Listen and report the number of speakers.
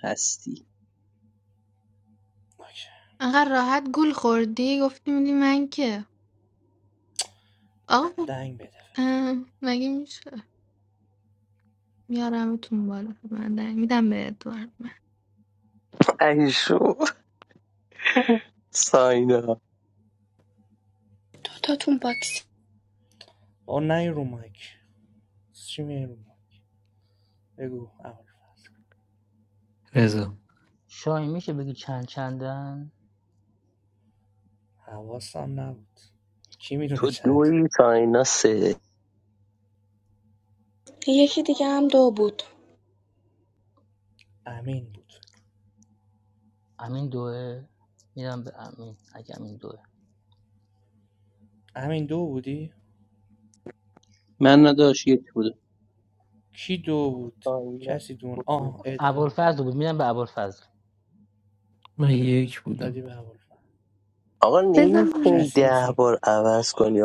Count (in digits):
7